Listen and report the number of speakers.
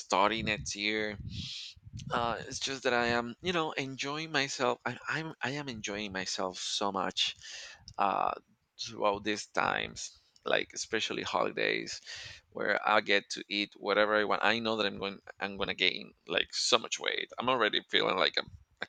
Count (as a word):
one